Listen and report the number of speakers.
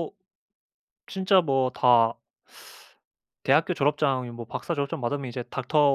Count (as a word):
one